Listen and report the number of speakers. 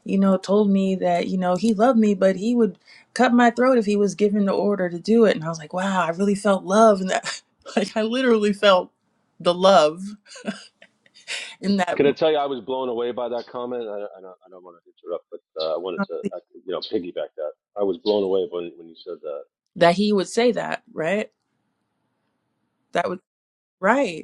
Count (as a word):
two